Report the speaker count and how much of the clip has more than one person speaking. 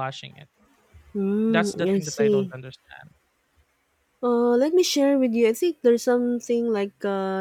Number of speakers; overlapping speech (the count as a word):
two, about 13%